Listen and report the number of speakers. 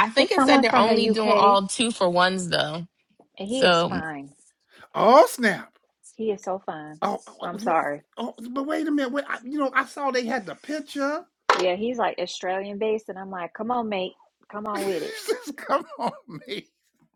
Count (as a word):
three